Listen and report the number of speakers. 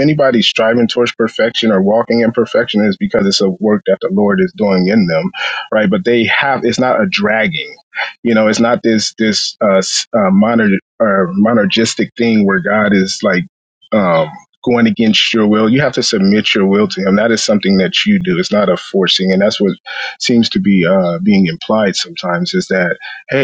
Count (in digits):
1